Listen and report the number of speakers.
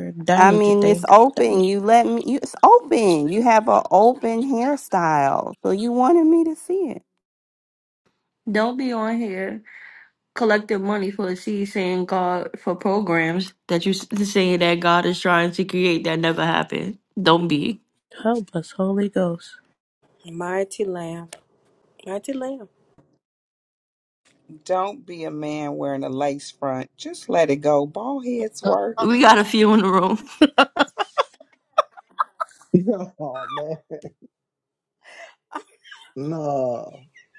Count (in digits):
6